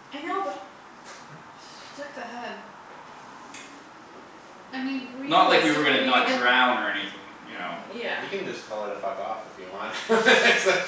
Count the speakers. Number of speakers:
4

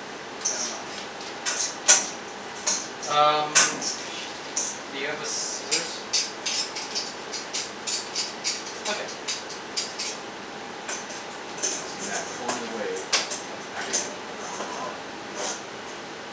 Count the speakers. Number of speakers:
2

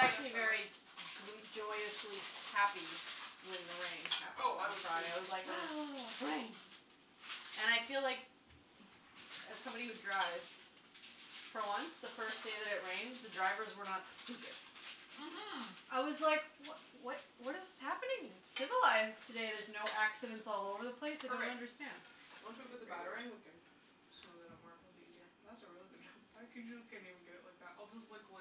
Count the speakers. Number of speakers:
2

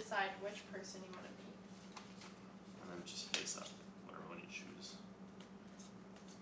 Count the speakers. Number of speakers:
2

